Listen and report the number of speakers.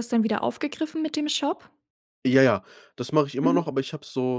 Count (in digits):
2